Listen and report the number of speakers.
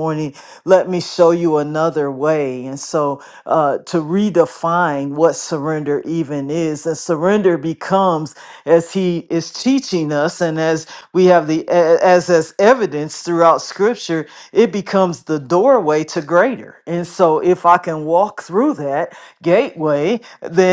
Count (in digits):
1